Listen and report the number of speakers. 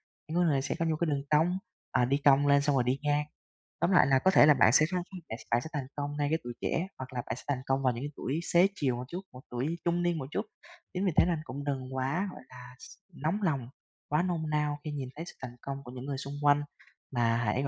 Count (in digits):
1